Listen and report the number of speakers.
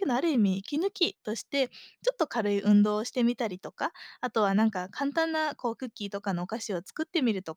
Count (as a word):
one